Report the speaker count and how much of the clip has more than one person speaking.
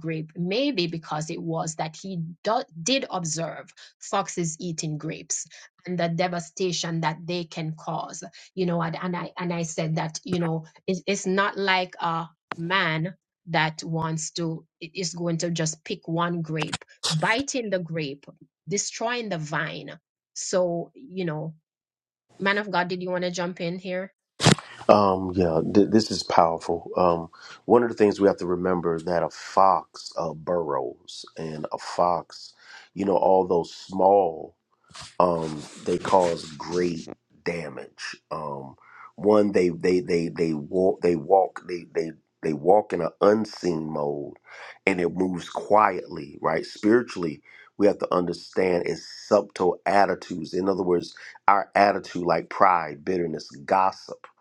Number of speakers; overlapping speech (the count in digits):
2, no overlap